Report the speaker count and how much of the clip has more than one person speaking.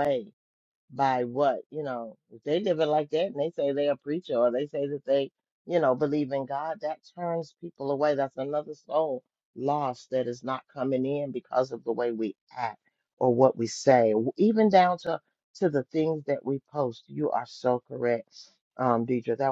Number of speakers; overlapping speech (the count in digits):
1, no overlap